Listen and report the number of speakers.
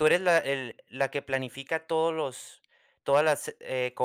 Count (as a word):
one